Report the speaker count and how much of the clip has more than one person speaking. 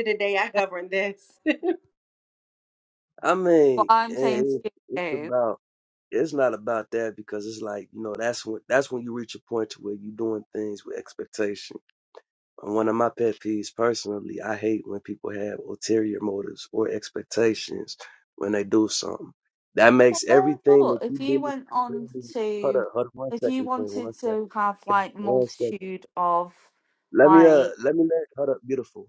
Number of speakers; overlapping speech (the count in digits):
3, about 21%